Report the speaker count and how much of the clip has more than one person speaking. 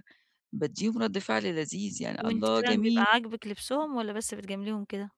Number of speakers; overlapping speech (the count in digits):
2, about 17%